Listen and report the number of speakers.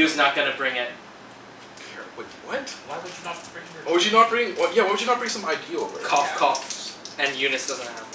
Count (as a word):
three